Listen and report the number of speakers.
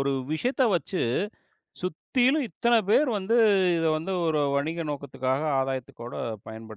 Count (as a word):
one